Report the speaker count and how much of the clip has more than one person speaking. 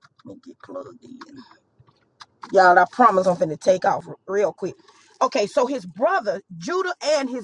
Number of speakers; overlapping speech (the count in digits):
1, no overlap